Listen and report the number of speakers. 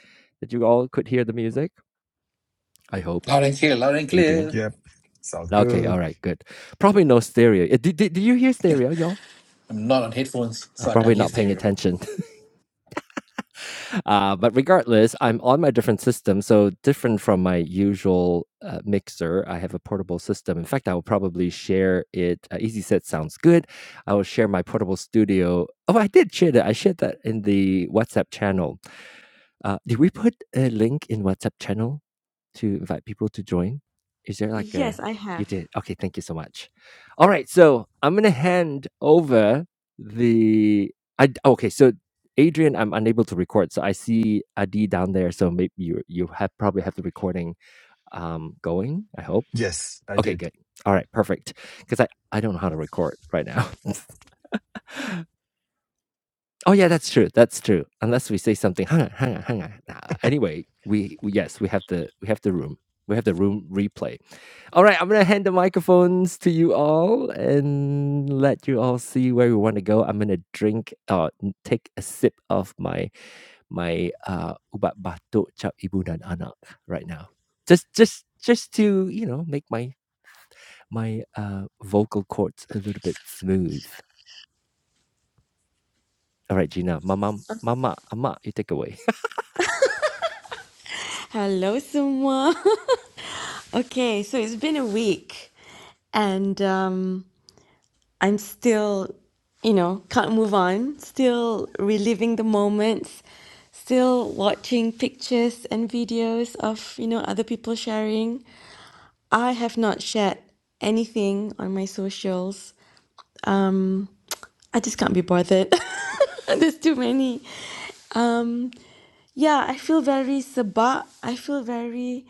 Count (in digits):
4